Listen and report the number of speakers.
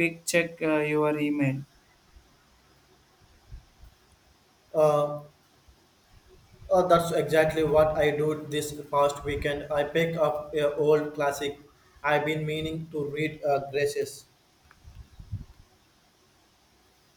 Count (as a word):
two